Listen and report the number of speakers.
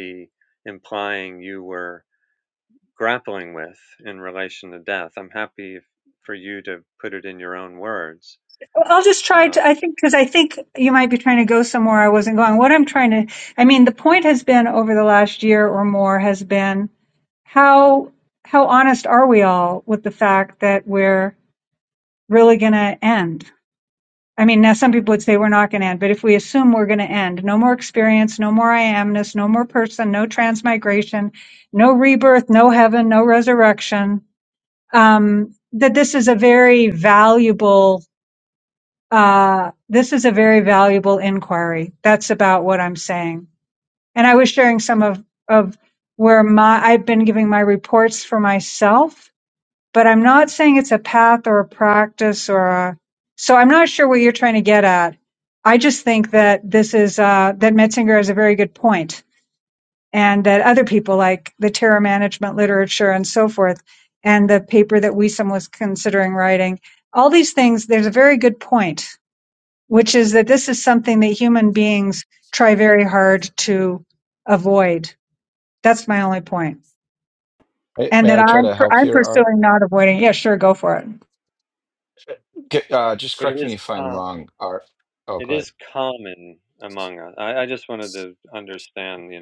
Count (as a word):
three